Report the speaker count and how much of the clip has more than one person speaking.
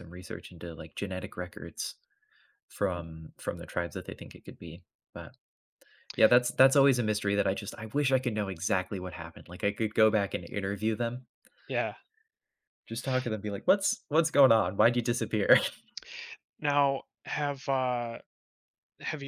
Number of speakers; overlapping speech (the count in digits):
2, under 1%